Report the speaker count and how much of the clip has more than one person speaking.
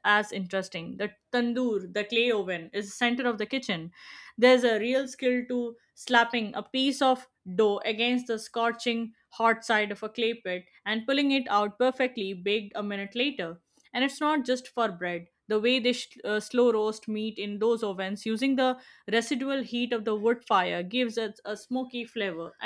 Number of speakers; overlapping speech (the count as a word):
one, no overlap